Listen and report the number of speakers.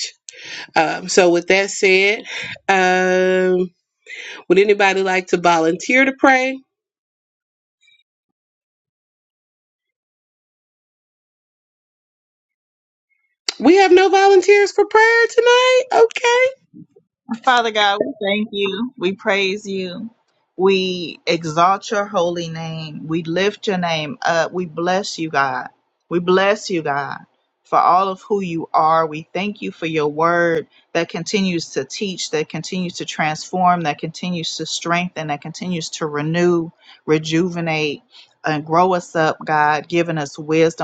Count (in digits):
2